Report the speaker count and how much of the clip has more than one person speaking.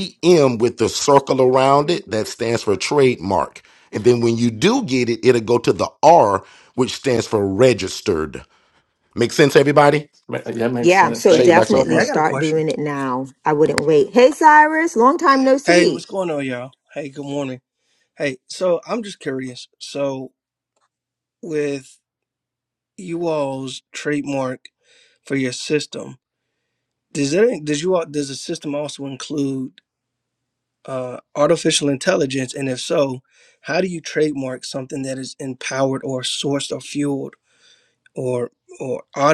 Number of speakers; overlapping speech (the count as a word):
four, about 5%